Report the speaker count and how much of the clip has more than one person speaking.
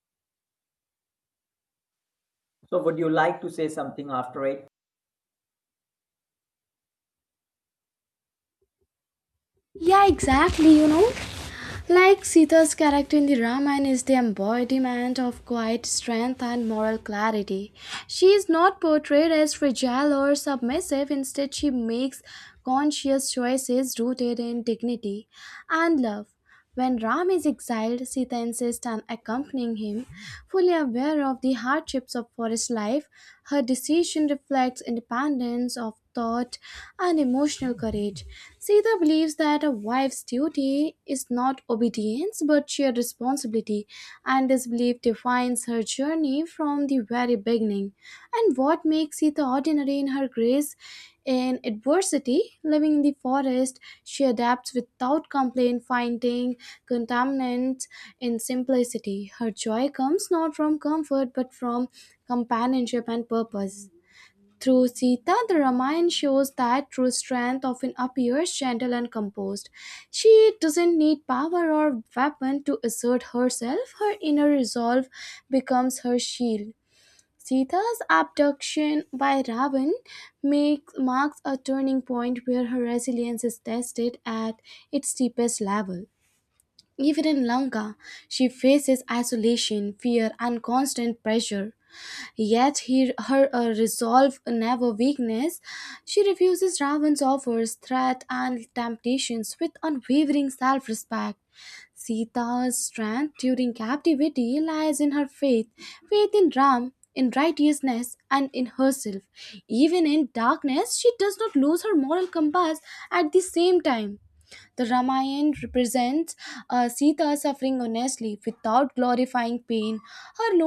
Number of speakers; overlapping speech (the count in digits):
2, no overlap